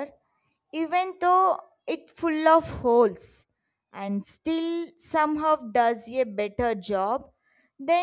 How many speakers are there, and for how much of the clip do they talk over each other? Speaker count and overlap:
1, no overlap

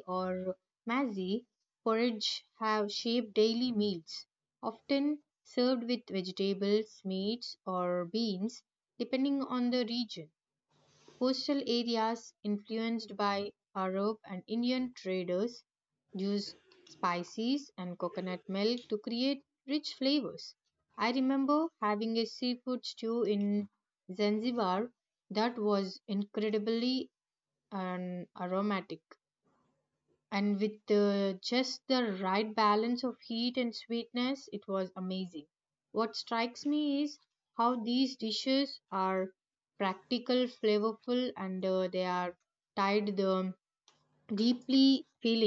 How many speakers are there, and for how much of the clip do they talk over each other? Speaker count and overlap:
1, no overlap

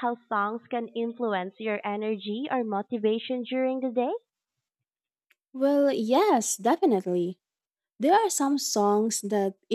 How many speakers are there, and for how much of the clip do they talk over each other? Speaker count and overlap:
2, no overlap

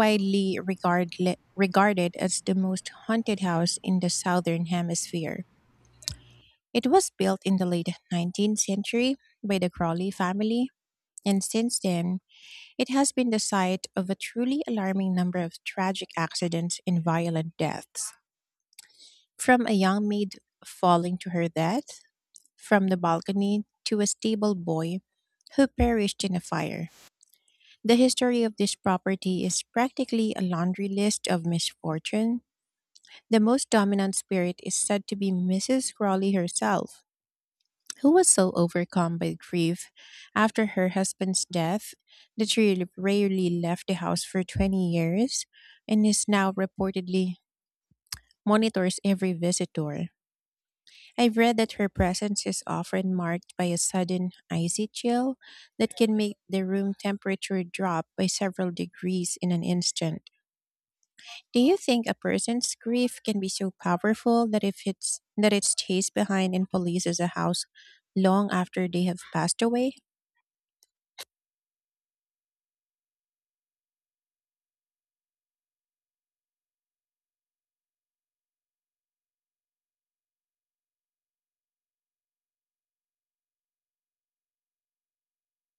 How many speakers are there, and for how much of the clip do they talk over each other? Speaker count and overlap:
1, no overlap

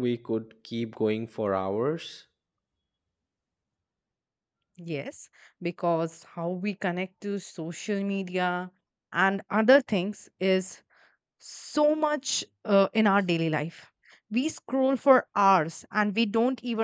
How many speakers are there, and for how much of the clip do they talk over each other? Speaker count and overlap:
2, no overlap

